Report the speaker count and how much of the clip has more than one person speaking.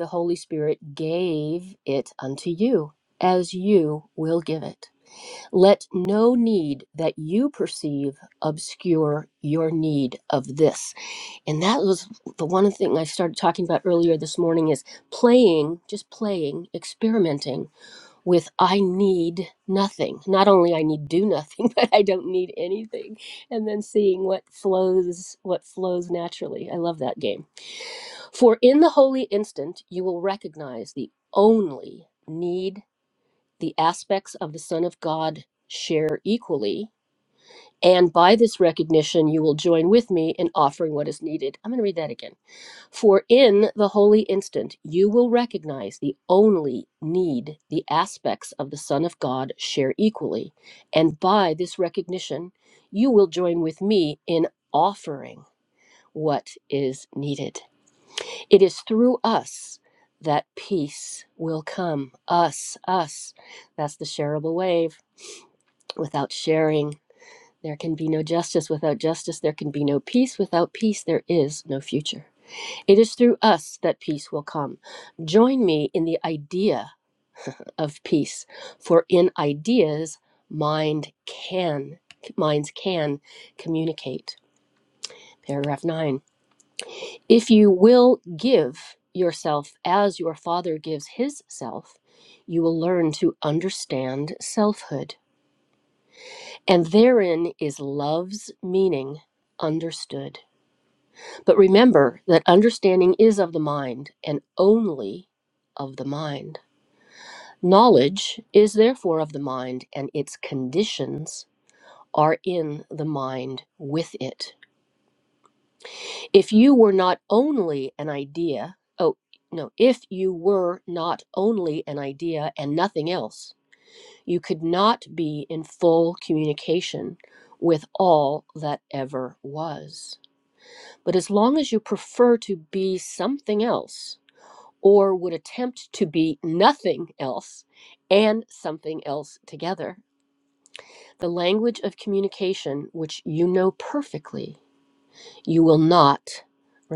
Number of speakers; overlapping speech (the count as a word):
one, no overlap